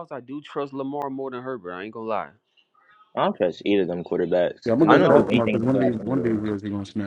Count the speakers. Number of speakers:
three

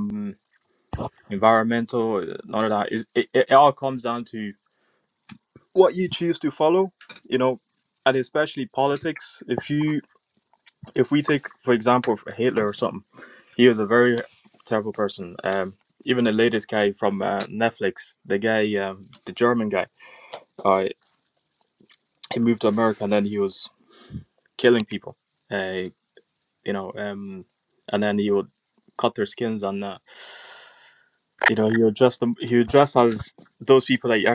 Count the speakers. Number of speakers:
one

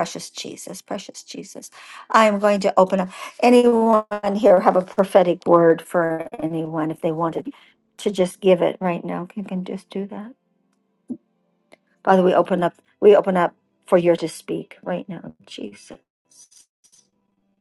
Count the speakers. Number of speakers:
one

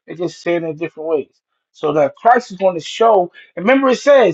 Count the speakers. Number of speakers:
one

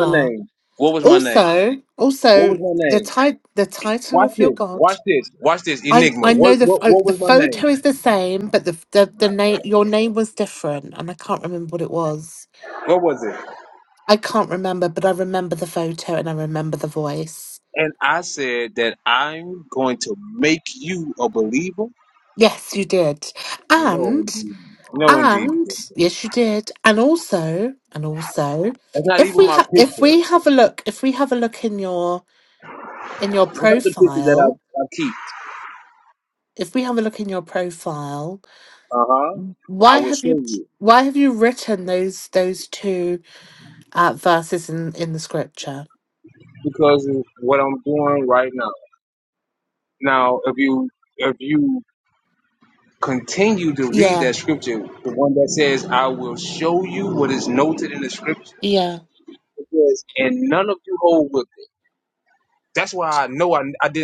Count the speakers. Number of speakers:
two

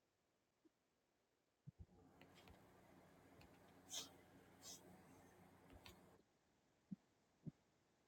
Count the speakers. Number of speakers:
zero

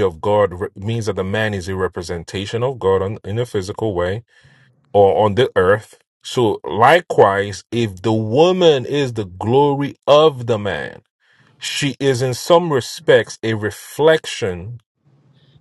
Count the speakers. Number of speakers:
one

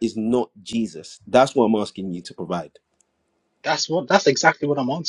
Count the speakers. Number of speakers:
two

